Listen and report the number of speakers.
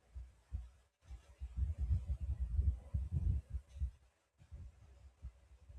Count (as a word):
zero